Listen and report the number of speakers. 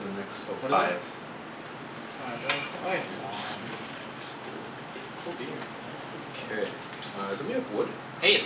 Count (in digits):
3